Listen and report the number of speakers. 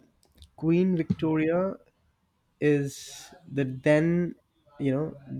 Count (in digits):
1